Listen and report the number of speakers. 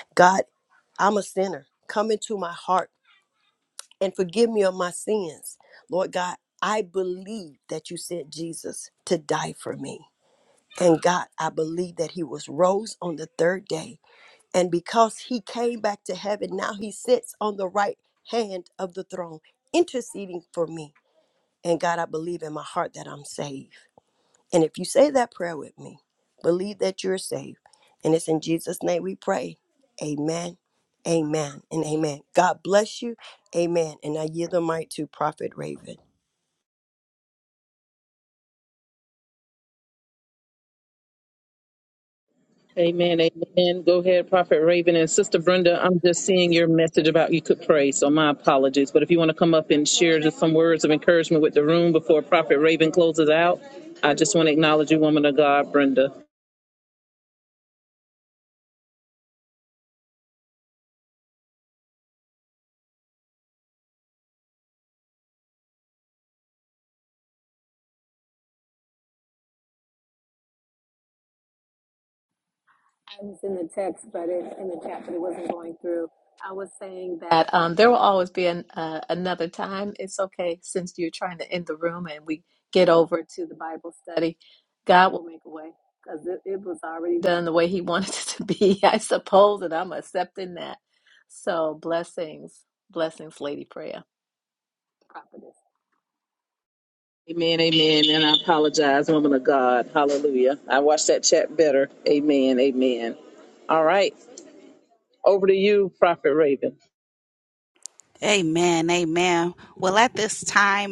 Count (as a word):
four